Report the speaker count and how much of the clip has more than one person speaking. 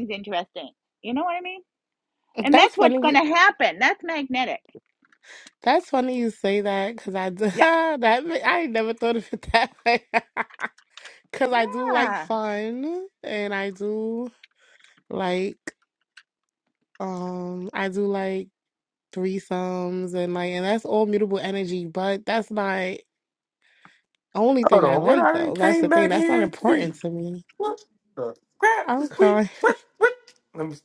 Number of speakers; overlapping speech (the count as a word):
three, about 15%